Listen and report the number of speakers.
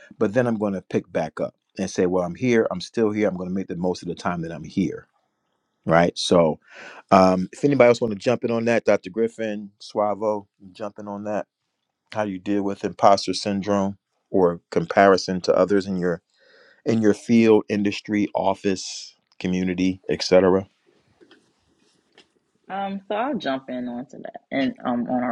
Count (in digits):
2